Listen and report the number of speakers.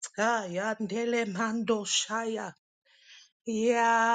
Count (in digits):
1